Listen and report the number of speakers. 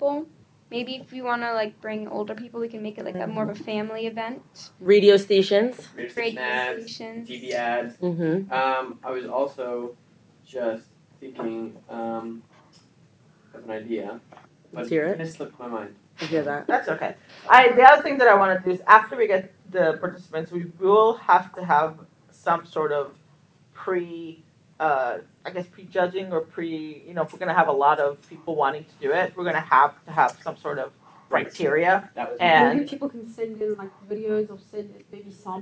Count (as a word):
five